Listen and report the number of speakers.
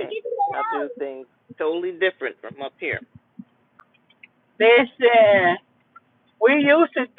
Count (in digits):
2